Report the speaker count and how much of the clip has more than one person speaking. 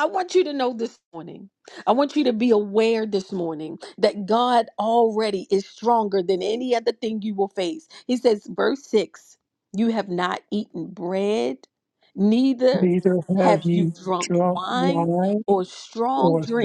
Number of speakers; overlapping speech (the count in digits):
2, about 14%